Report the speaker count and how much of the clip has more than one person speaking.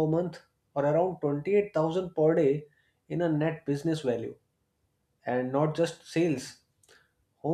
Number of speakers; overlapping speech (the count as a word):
one, no overlap